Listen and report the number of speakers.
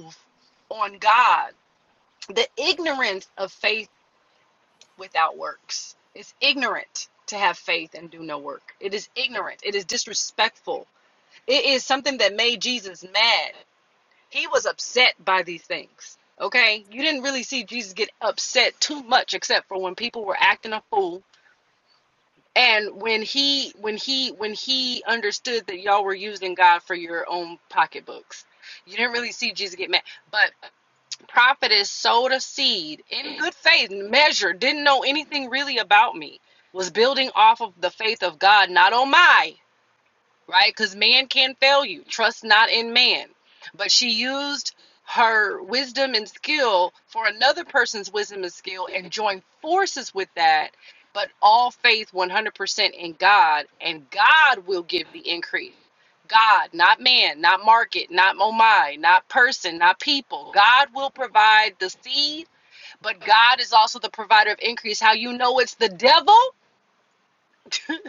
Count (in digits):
1